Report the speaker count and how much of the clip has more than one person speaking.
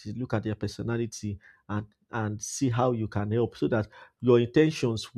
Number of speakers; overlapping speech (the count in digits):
1, no overlap